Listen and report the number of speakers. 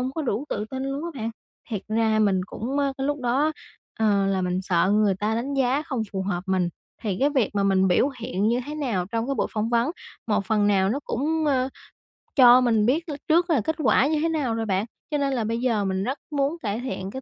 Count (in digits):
1